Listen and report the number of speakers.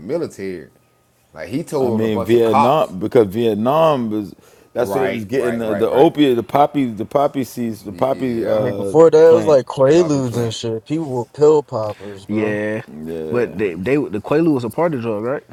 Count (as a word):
four